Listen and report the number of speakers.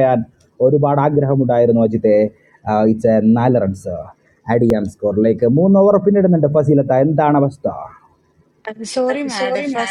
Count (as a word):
two